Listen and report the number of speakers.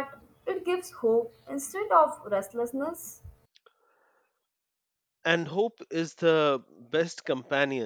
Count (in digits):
2